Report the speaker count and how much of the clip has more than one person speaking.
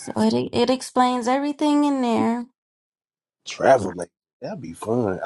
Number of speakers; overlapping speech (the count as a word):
two, no overlap